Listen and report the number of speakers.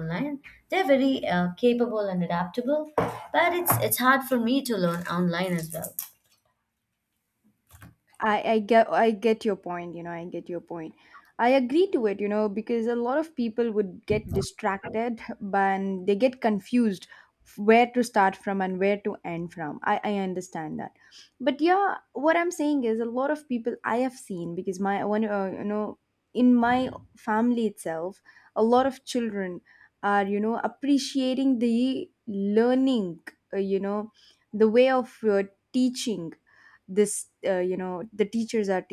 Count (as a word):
two